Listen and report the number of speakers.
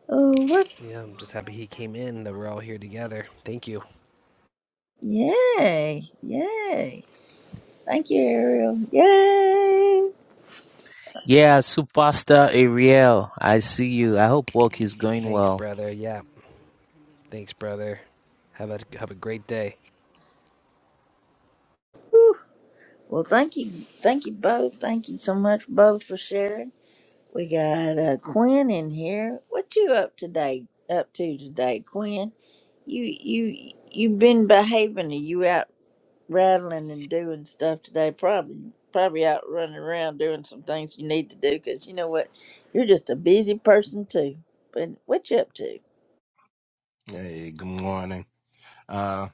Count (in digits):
4